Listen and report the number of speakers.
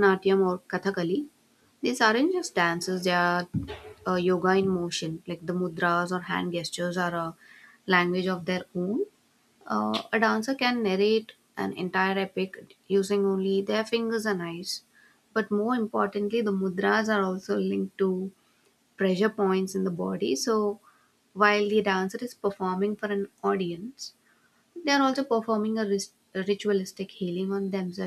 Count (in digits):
1